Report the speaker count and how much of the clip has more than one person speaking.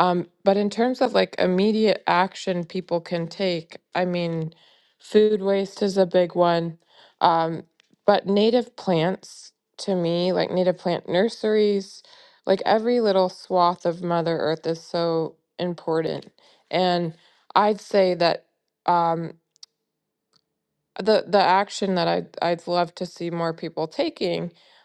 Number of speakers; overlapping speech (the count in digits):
1, no overlap